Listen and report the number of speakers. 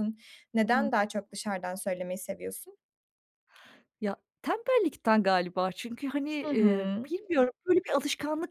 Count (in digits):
2